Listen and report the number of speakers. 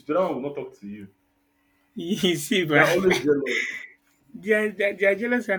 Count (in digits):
2